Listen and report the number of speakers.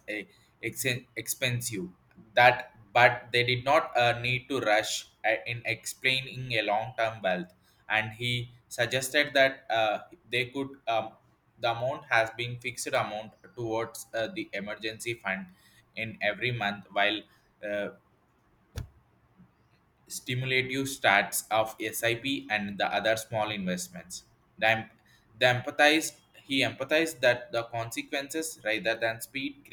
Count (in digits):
1